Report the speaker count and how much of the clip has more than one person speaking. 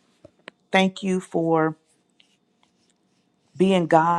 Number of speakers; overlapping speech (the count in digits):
1, no overlap